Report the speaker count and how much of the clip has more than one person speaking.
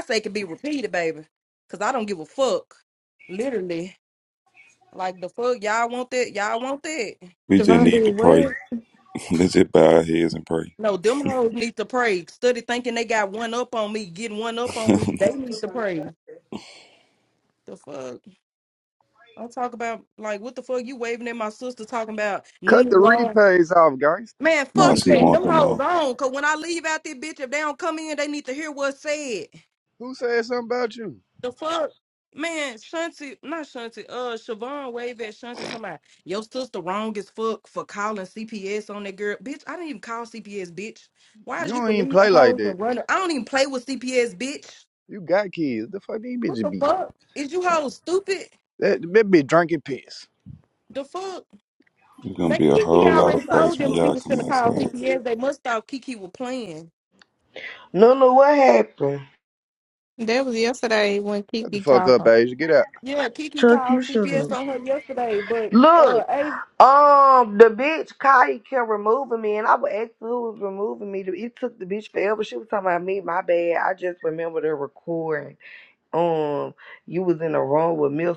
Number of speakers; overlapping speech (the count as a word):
five, about 11%